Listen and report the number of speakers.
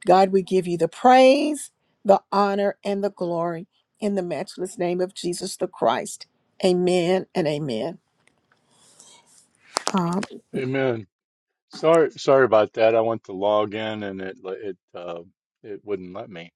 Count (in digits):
2